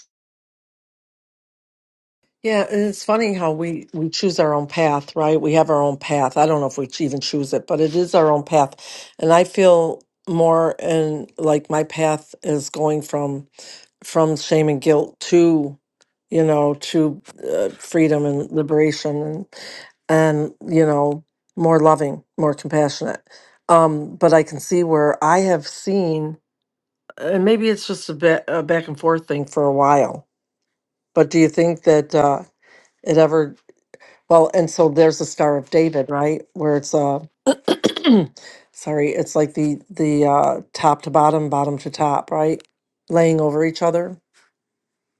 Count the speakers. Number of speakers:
one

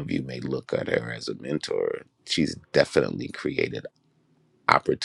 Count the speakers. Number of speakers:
one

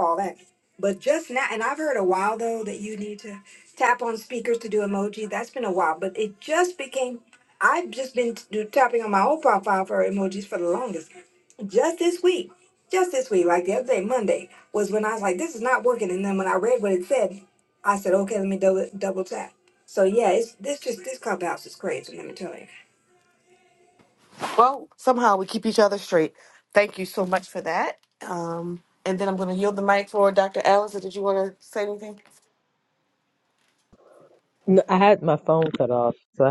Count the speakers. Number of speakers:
three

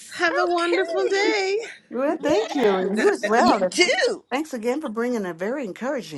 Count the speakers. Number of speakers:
three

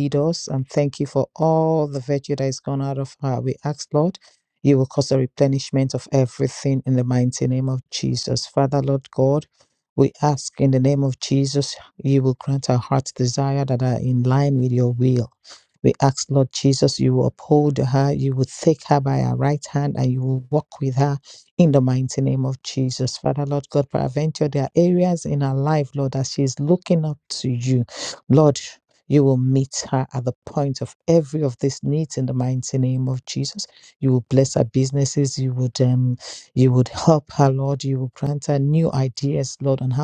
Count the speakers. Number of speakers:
one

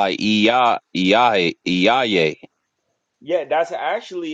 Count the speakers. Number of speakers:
two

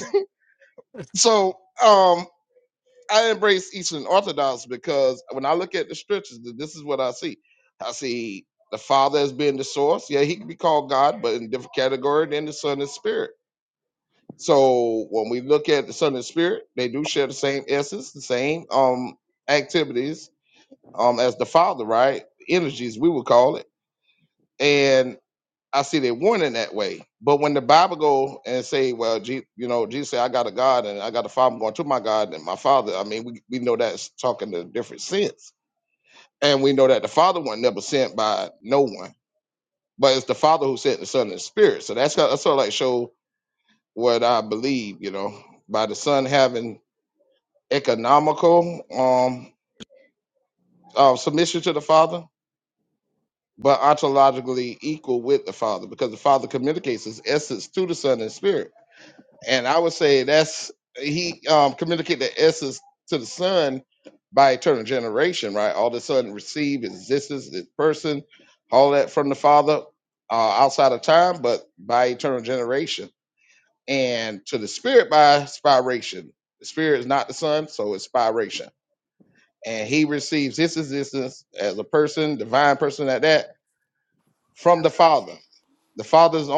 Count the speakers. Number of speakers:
one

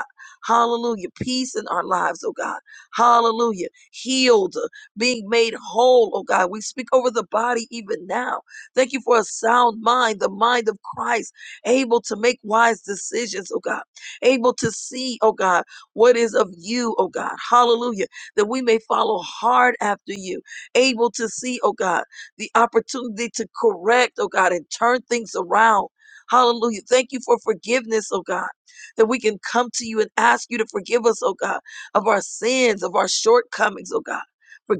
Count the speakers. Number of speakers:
one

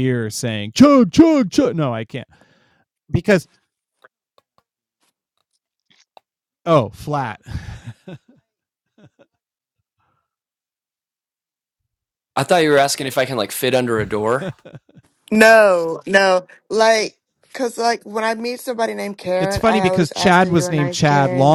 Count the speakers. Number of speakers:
three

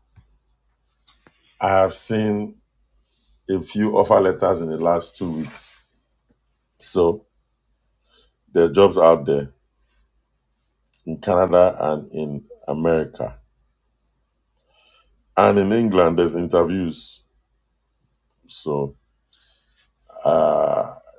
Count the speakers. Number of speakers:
one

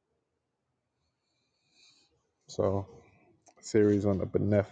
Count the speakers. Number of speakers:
one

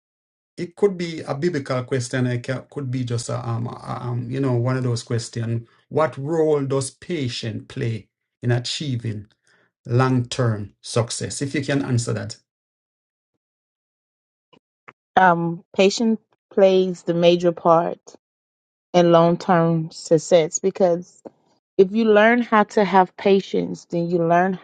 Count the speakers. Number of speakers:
two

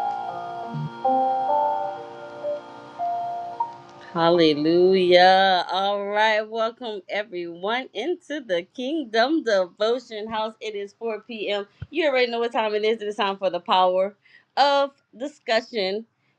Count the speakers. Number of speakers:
one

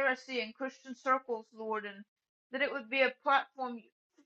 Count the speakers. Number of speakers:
one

